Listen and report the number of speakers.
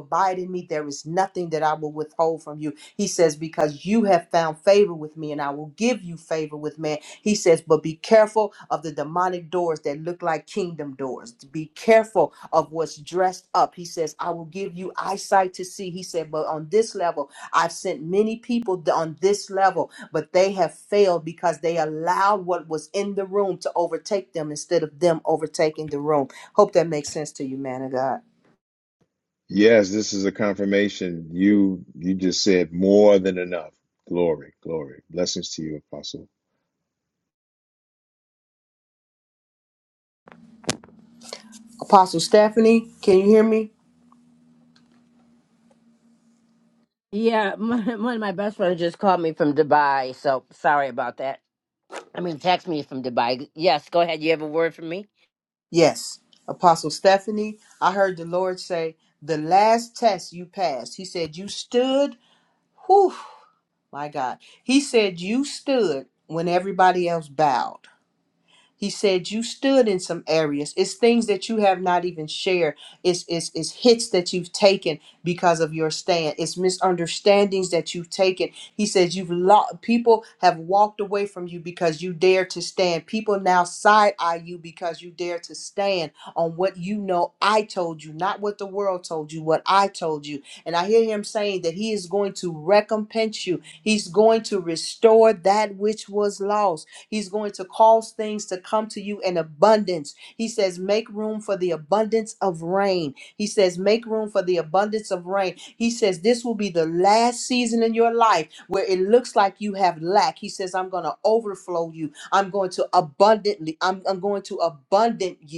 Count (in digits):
3